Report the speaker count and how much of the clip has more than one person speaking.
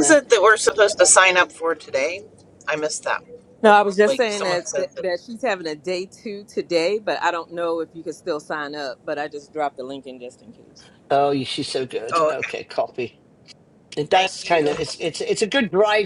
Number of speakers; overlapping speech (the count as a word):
three, about 16%